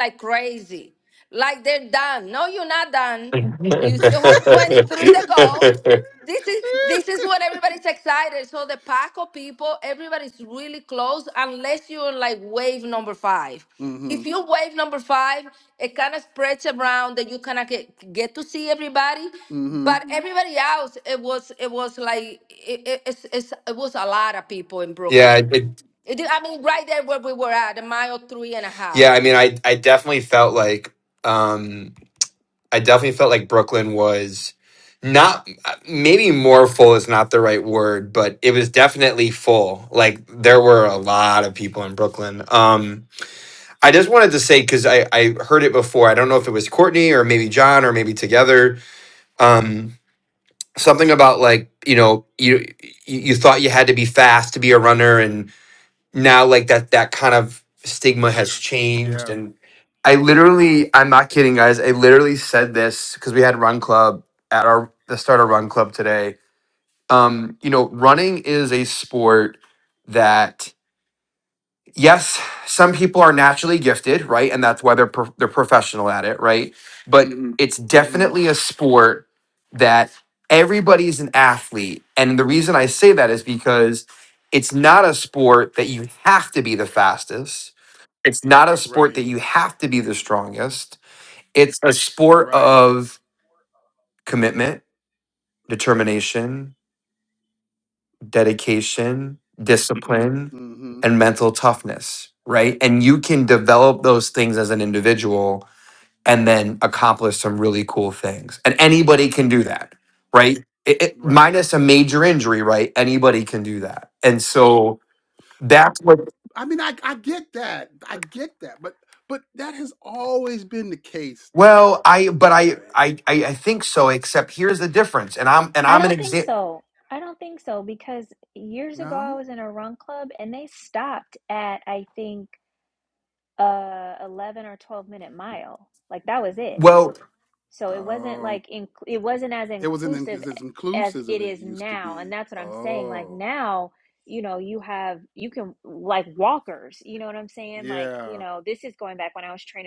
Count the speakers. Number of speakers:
4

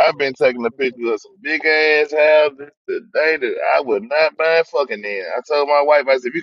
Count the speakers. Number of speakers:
1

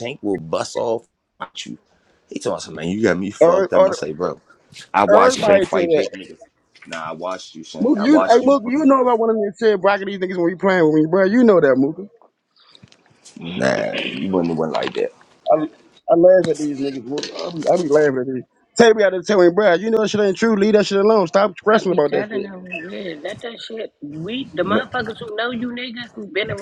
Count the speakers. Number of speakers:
3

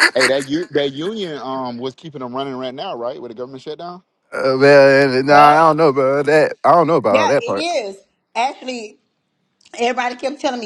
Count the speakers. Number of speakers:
3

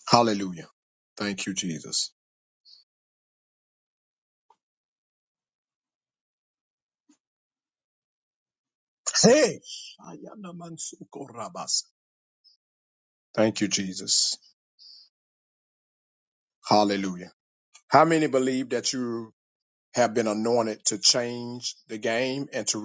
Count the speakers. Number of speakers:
1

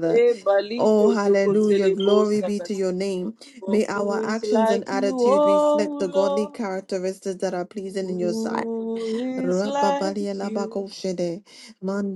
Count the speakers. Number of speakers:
2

